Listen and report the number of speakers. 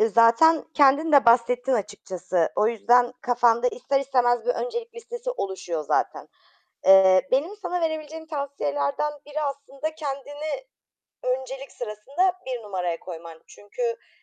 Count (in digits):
1